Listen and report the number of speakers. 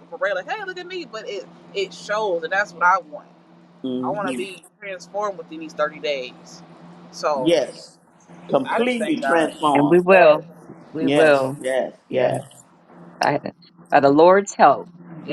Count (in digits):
3